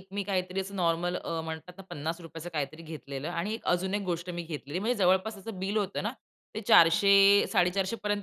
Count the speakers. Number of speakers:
1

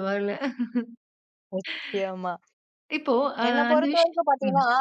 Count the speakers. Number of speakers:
2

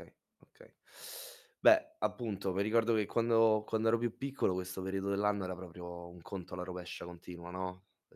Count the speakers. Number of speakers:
1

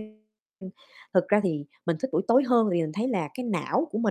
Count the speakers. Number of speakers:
1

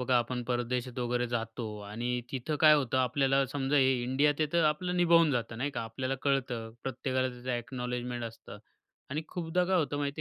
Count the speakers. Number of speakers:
1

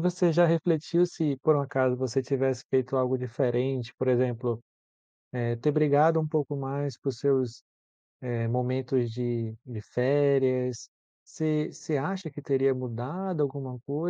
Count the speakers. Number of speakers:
1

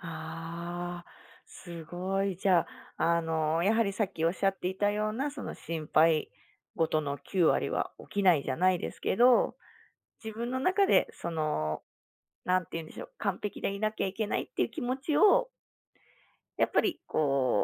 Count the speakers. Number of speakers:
1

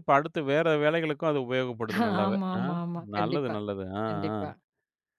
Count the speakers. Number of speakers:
2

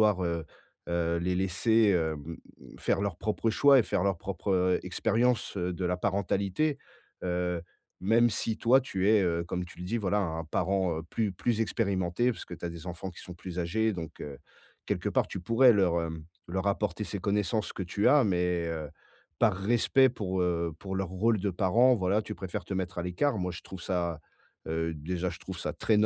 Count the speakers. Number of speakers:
1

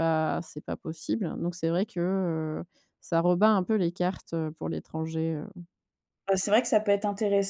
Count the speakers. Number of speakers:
2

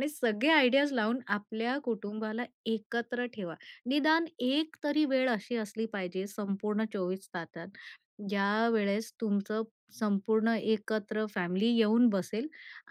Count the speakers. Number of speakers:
1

